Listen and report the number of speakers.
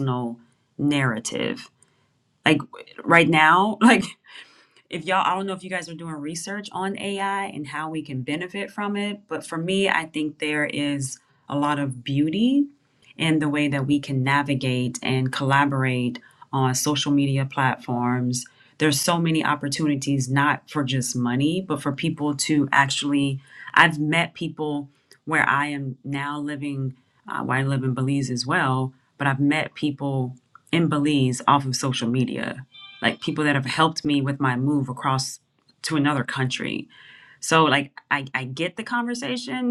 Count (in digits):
1